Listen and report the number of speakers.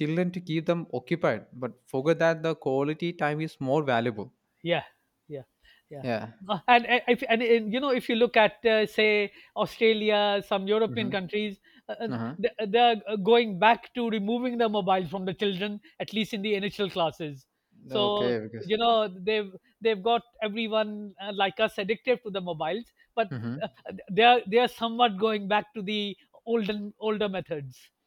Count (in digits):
2